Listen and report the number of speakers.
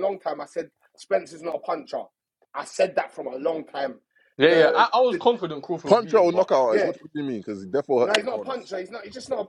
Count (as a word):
three